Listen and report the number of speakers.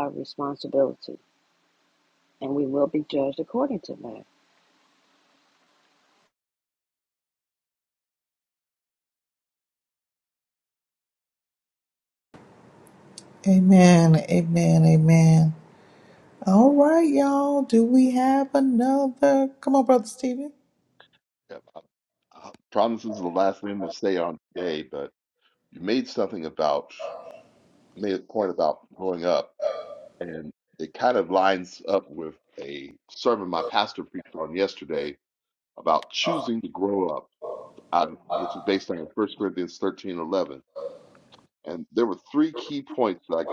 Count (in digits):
3